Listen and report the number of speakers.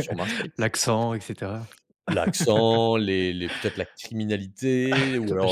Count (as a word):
two